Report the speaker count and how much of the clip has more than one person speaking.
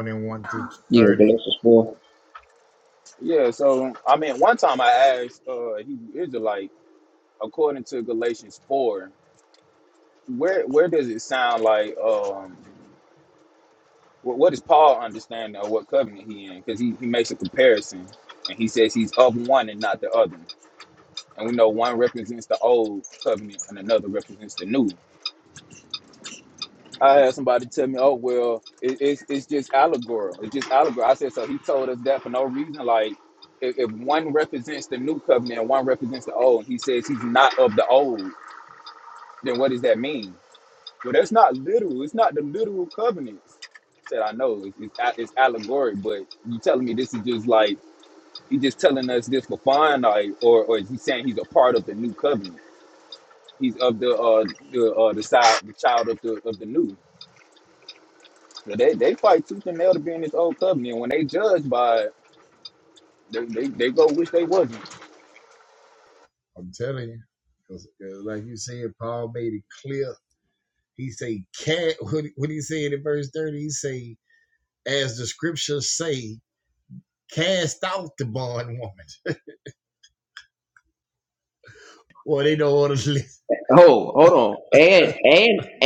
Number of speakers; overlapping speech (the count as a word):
three, under 1%